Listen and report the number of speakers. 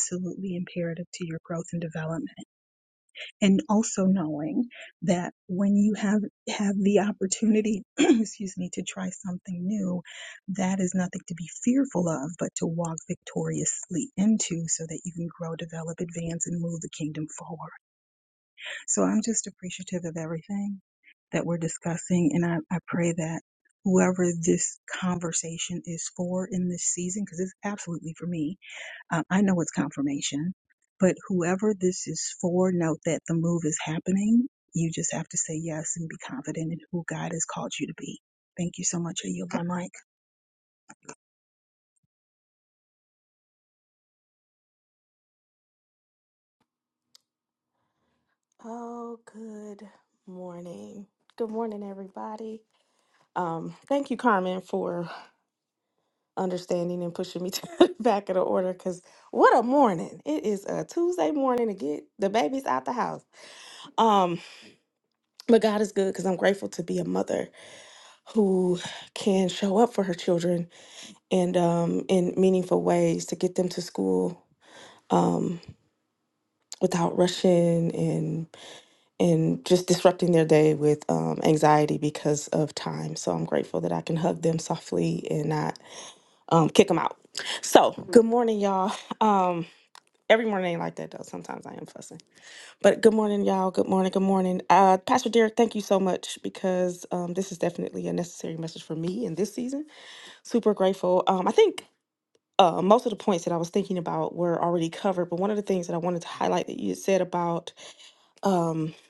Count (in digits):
2